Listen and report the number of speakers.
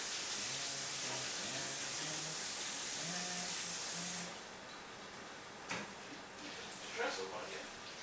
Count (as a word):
one